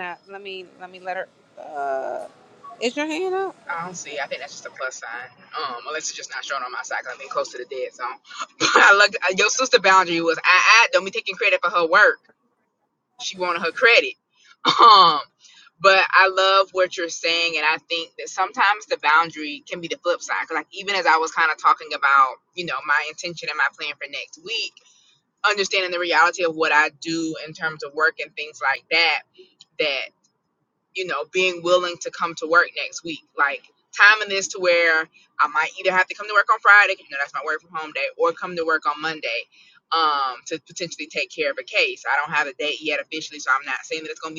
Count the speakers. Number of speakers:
two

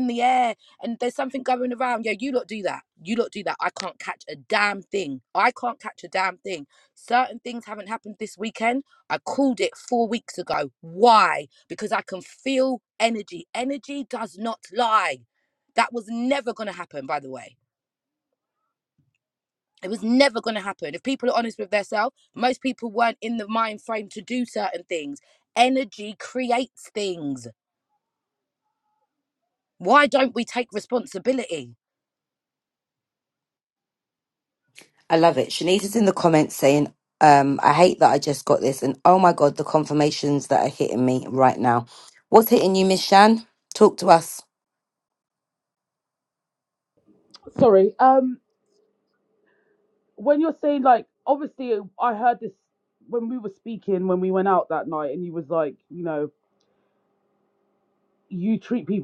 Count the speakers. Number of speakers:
three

